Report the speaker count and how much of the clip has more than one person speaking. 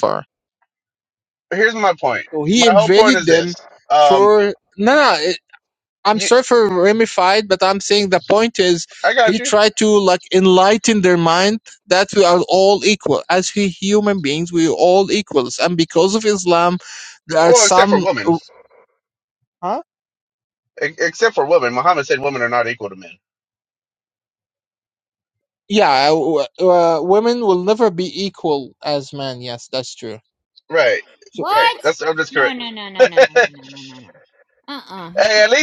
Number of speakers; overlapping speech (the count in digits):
3, about 9%